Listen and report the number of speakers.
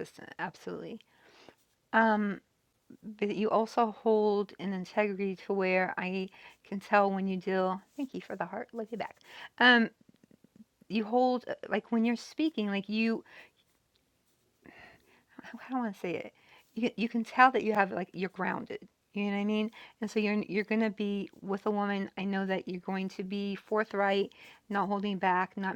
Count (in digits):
1